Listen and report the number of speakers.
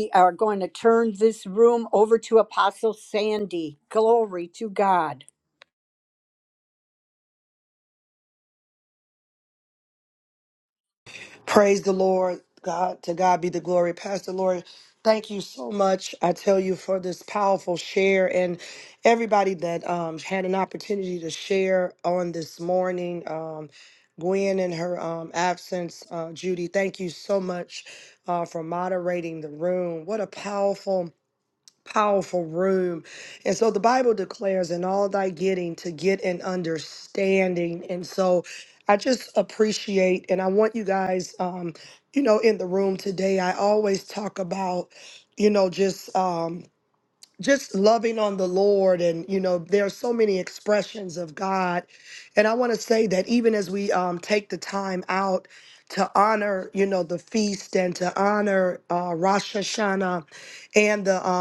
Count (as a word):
two